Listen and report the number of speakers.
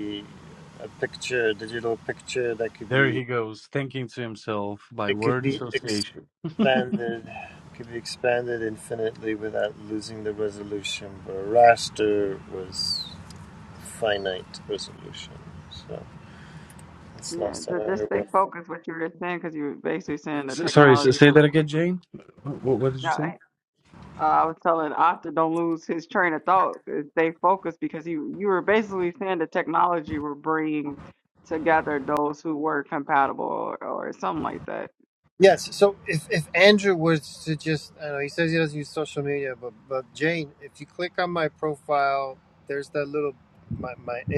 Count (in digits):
3